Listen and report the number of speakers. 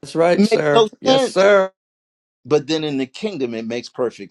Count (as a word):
two